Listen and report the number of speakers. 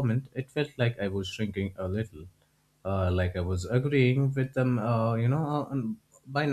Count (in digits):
1